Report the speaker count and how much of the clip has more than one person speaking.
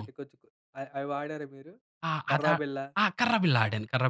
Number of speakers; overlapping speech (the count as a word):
two, about 9%